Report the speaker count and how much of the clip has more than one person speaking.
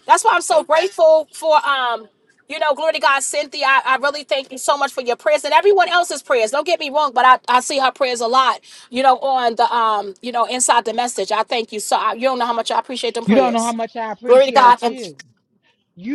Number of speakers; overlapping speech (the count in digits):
2, about 6%